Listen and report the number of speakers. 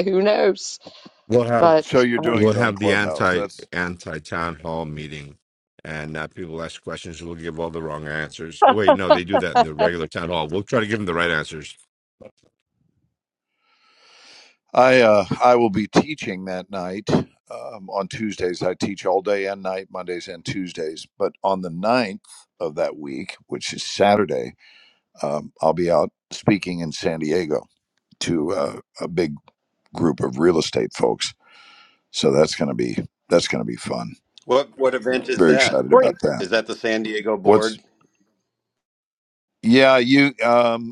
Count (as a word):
four